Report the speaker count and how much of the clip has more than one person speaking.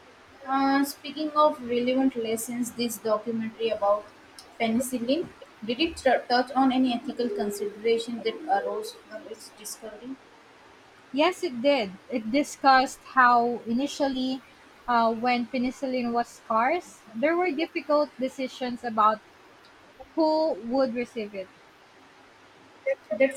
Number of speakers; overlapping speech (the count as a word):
two, no overlap